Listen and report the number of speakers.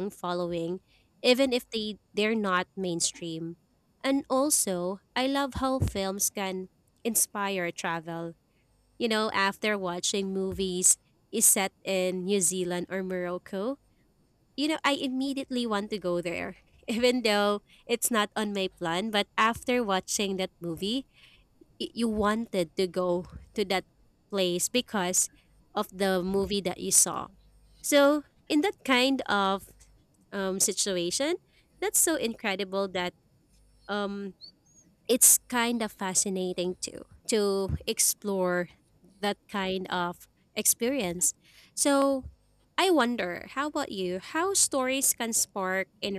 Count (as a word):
one